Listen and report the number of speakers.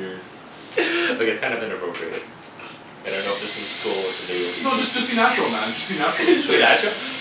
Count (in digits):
2